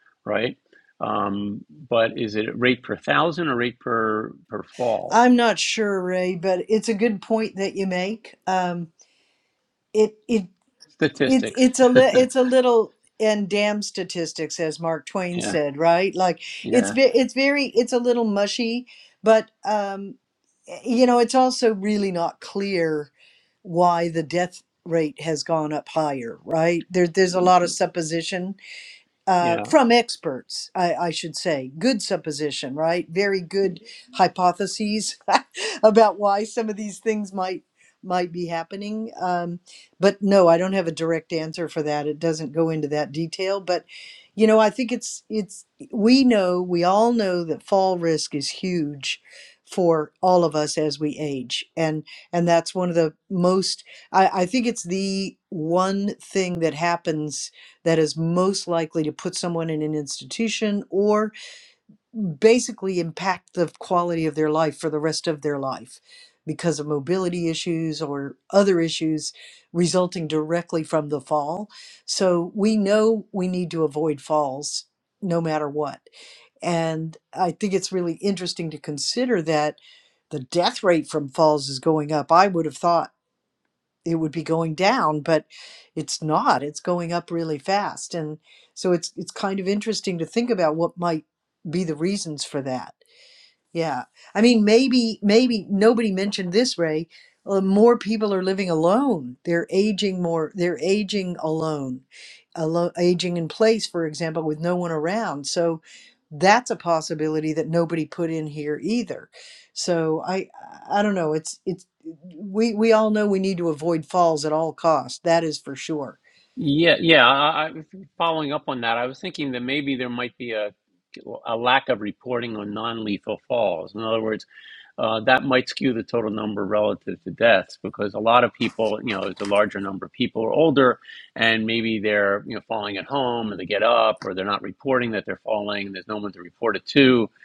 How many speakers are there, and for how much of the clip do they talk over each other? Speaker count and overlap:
two, about 1%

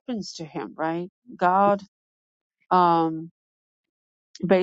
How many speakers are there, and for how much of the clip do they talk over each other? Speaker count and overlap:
one, no overlap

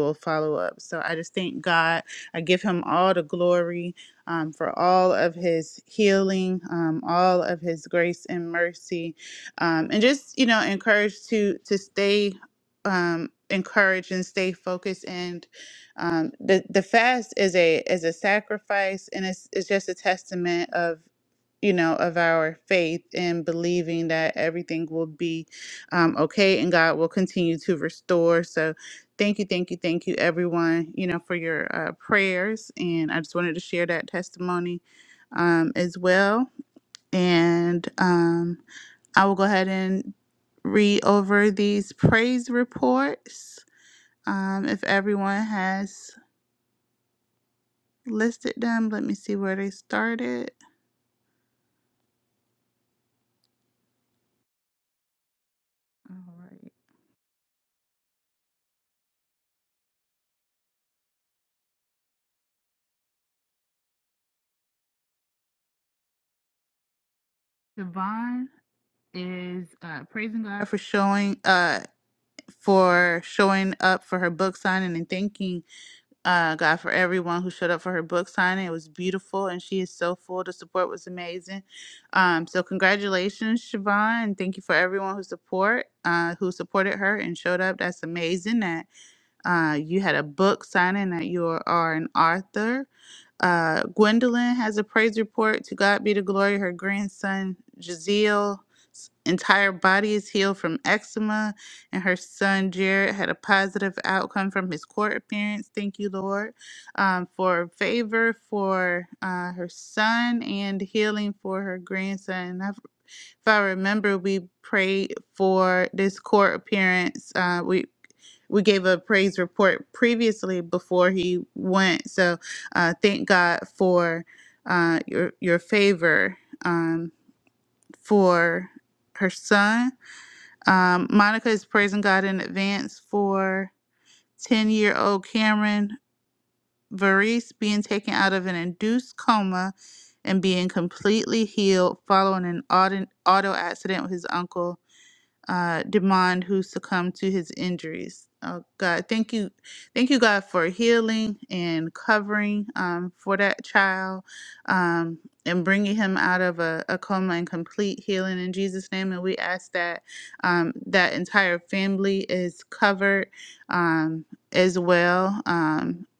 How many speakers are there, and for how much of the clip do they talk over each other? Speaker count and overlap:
one, no overlap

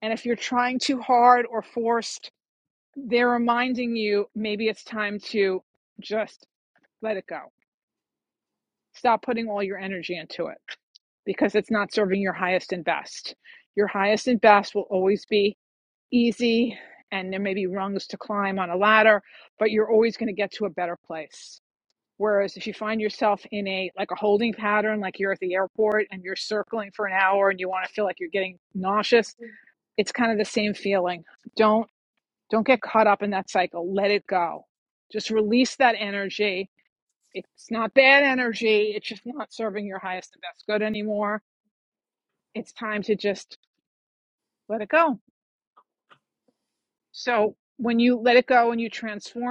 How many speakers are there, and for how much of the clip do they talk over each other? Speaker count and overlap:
one, no overlap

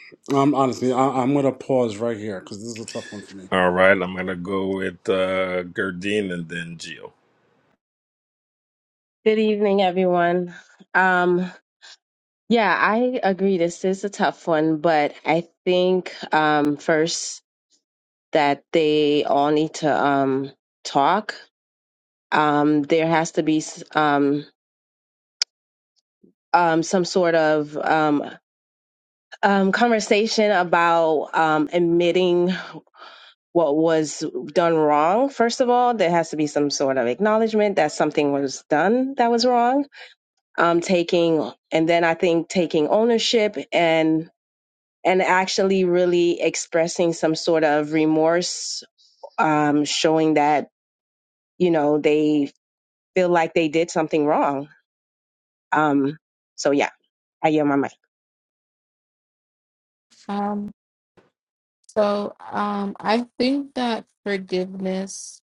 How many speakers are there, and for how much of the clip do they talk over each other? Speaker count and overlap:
four, no overlap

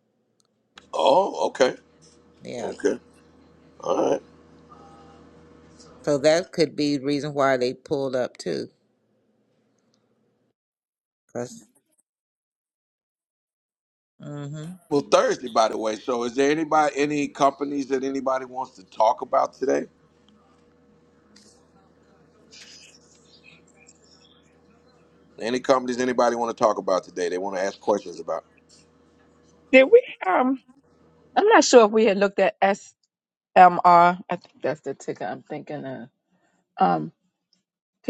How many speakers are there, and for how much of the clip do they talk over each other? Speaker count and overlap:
three, under 1%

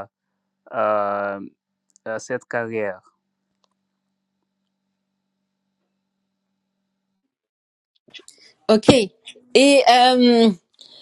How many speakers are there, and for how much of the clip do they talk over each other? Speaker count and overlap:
two, no overlap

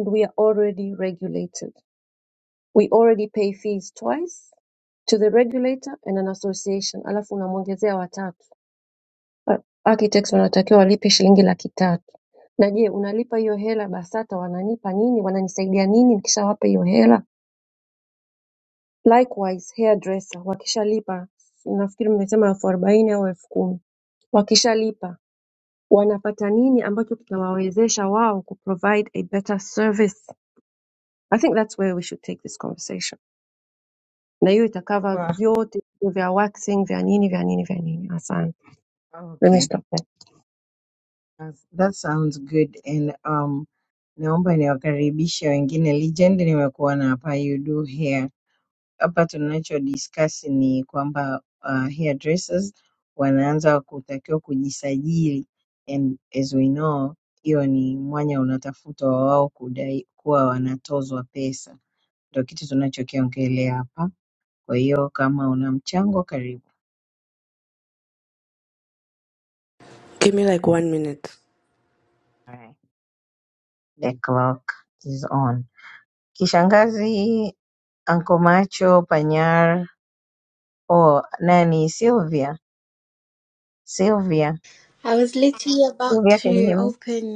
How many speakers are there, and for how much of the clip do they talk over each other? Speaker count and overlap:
four, about 1%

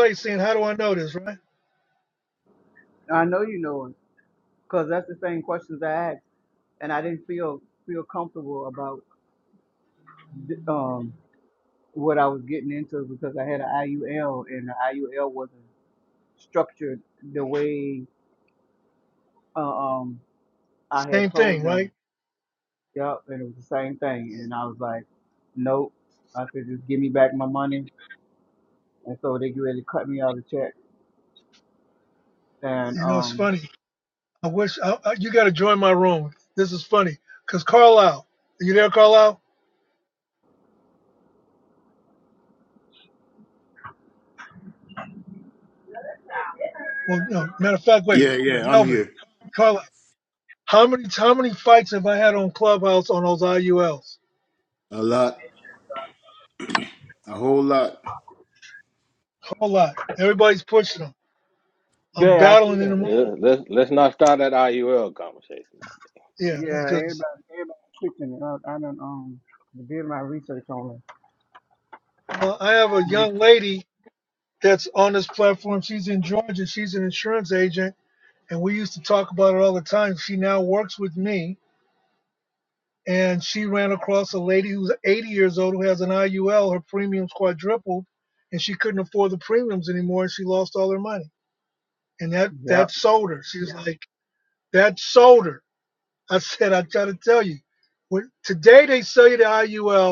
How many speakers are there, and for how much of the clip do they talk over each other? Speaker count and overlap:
four, about 4%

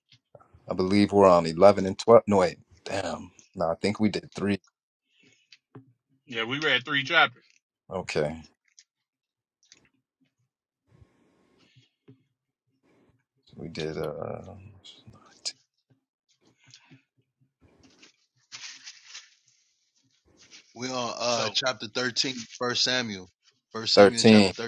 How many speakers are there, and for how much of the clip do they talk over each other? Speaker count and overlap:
three, about 3%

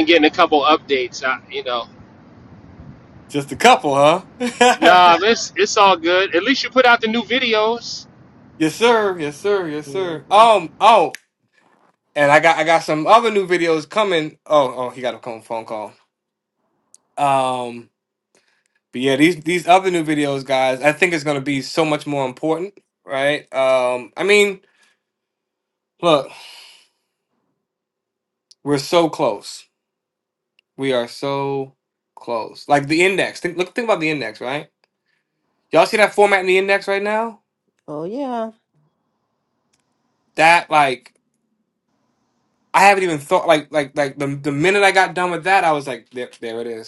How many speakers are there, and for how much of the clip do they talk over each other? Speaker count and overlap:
three, about 1%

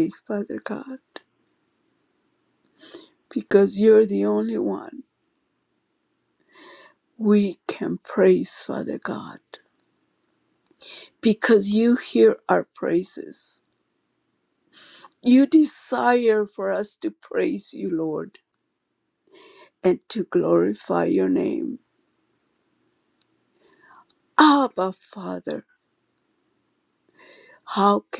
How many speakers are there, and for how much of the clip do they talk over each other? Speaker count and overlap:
one, no overlap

